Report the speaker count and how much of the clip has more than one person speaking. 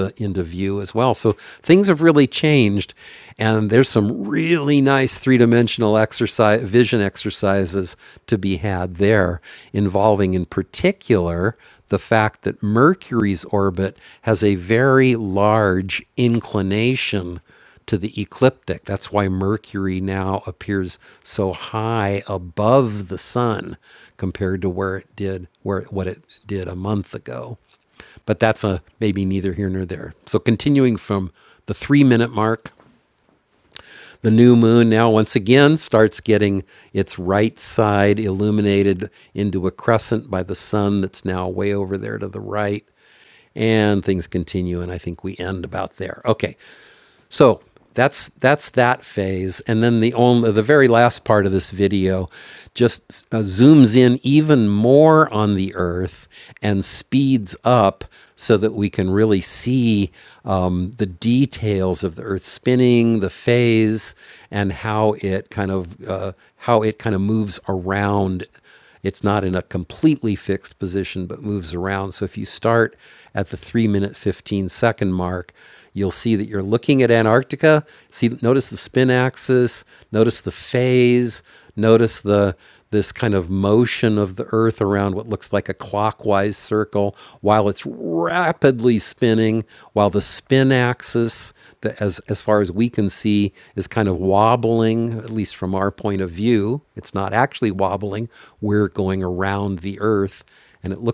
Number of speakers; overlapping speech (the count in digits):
1, no overlap